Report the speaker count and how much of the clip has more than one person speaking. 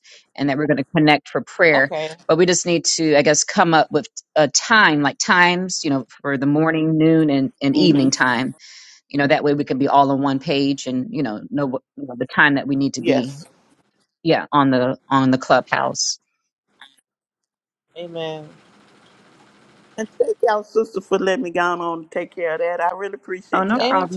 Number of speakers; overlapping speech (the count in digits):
3, about 7%